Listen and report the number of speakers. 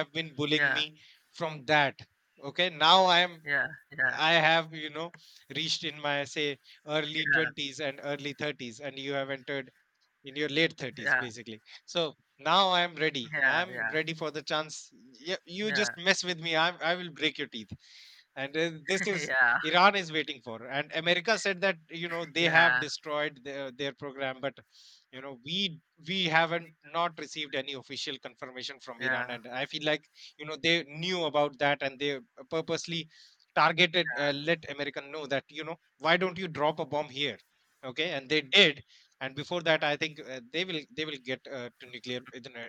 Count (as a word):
two